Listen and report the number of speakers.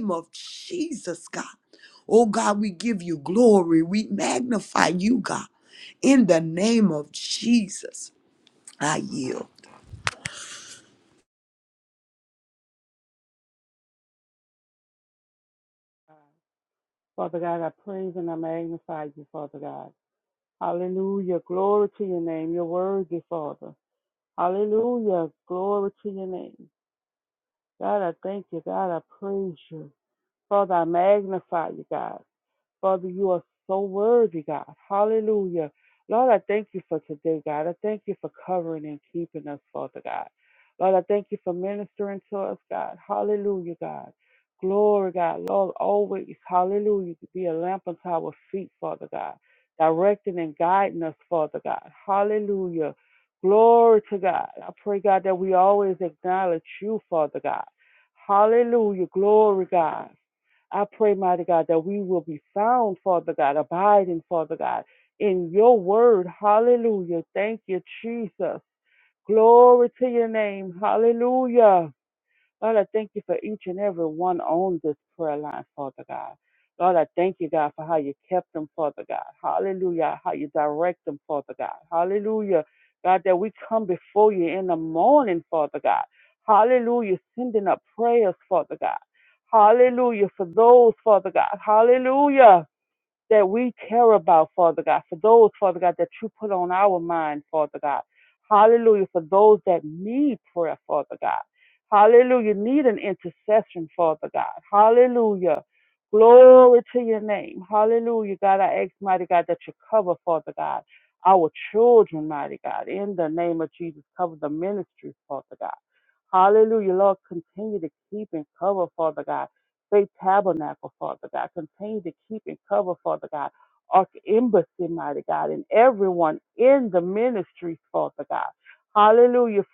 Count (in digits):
2